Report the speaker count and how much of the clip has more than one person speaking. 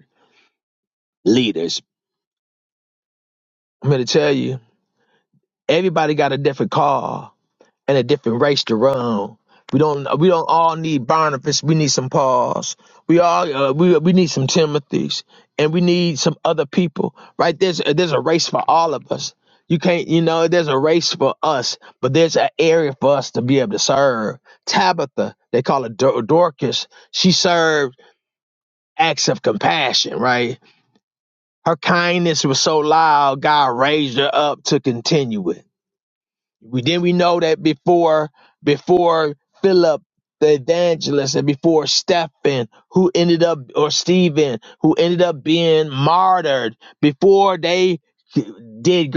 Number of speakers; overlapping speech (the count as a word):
one, no overlap